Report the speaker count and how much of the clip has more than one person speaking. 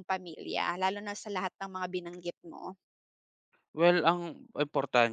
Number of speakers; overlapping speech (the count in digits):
2, no overlap